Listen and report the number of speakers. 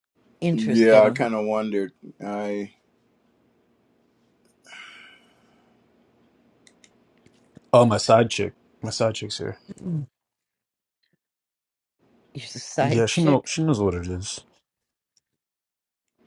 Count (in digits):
3